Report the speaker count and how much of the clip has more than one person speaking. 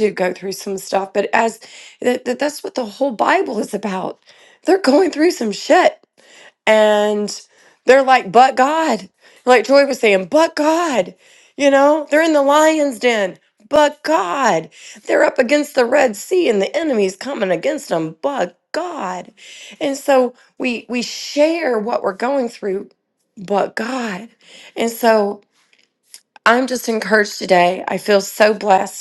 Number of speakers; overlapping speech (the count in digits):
1, no overlap